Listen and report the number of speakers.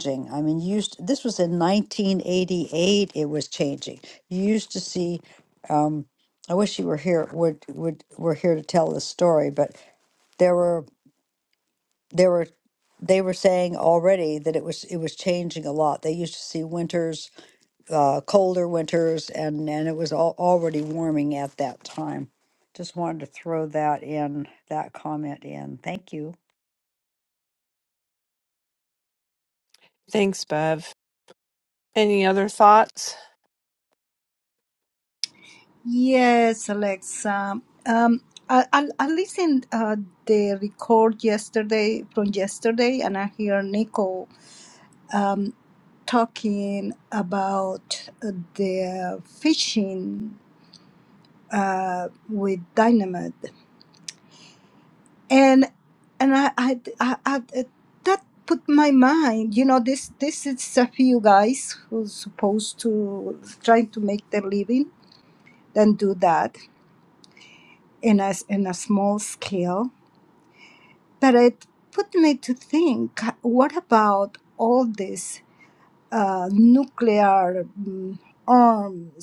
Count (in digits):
3